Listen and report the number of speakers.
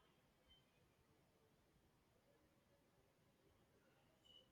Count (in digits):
0